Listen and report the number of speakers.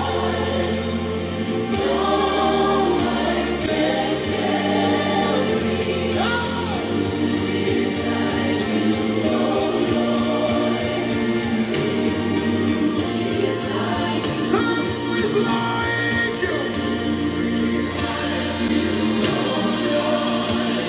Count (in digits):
0